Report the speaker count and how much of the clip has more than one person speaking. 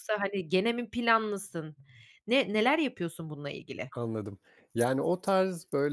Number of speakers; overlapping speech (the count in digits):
2, no overlap